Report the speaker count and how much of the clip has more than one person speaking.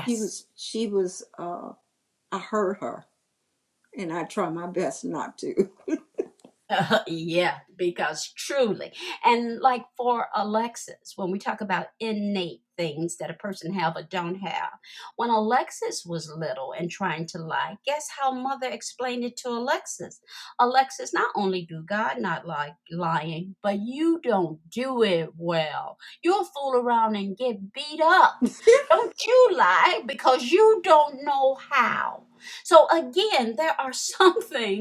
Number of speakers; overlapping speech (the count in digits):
2, under 1%